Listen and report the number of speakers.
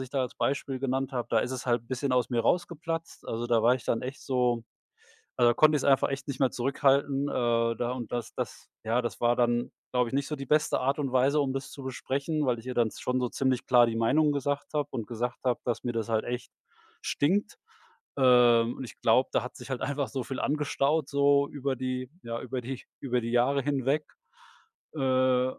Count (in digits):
1